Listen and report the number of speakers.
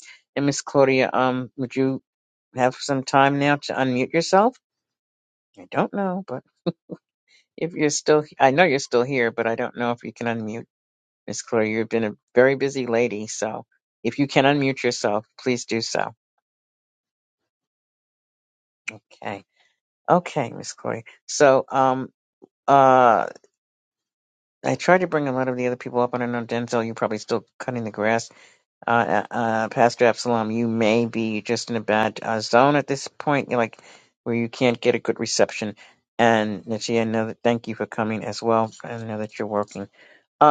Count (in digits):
1